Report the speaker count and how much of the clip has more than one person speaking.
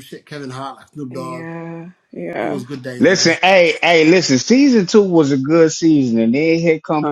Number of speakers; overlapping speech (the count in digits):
3, about 14%